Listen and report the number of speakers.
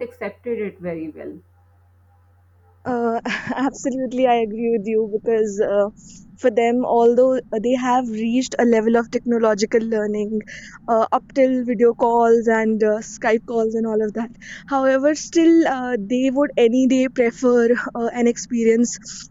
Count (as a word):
two